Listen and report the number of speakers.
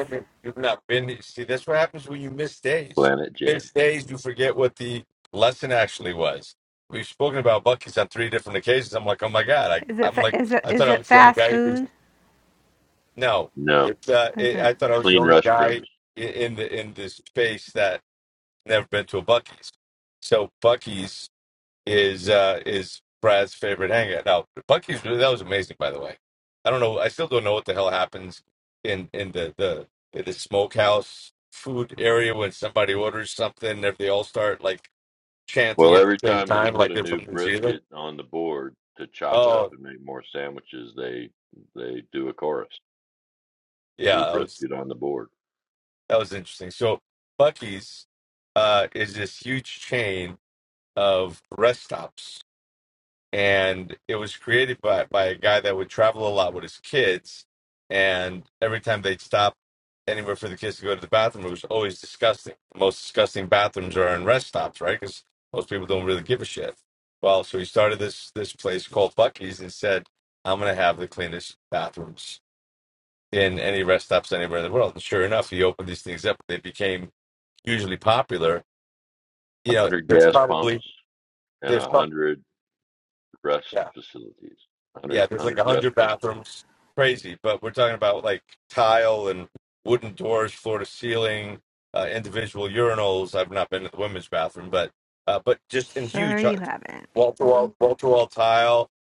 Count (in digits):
3